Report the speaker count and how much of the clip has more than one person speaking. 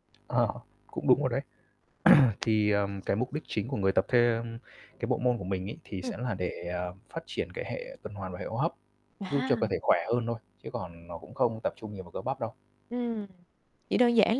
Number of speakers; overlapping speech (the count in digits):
2, about 3%